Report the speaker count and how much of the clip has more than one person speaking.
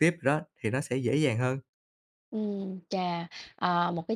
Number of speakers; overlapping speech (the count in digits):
2, no overlap